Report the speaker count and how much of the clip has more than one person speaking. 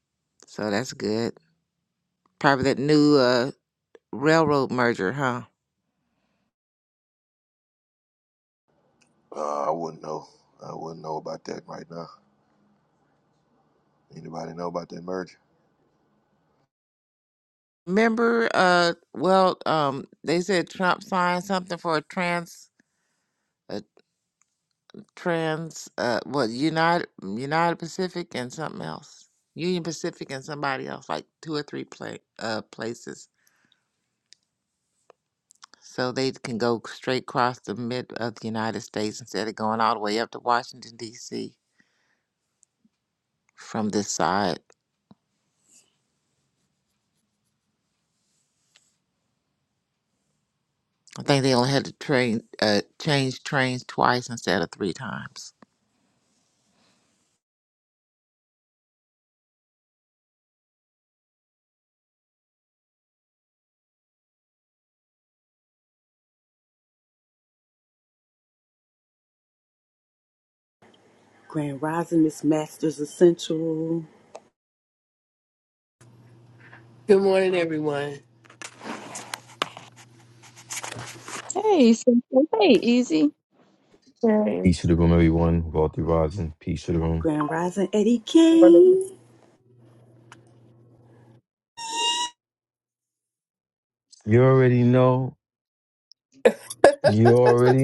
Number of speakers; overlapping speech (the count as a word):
six, under 1%